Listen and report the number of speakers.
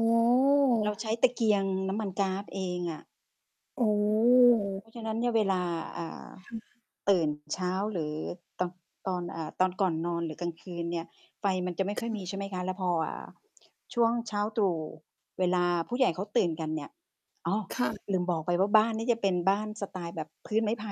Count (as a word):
two